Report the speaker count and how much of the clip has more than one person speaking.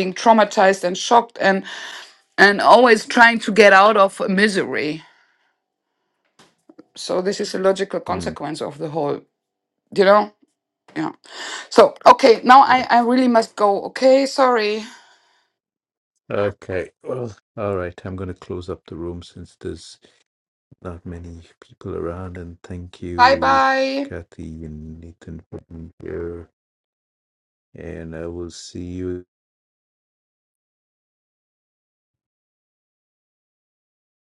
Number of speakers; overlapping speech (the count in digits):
2, about 3%